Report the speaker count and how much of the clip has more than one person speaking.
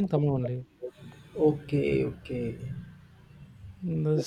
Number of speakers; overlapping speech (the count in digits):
2, no overlap